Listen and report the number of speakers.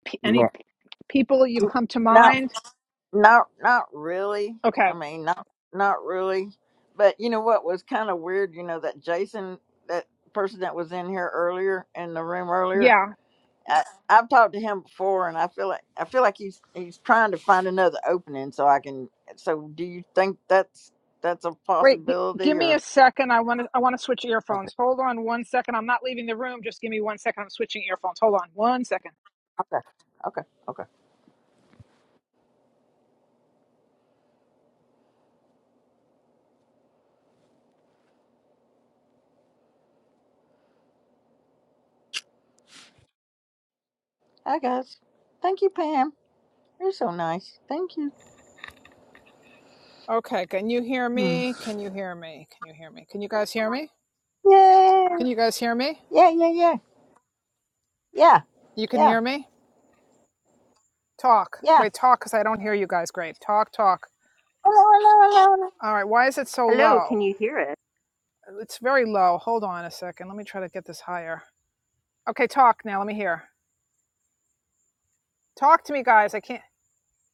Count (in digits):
3